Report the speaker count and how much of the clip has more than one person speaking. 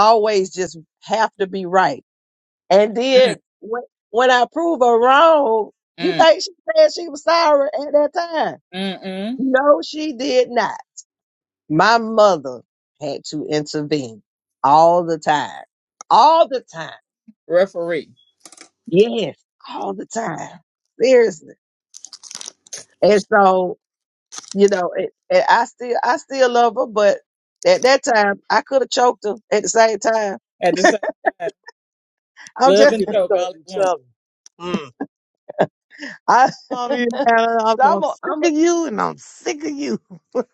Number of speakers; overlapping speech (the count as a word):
three, about 6%